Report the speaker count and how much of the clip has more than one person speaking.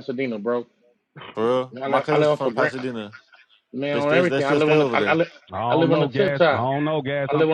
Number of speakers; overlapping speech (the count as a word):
three, about 47%